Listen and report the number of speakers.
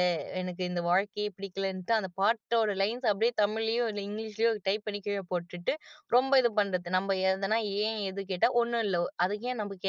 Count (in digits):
1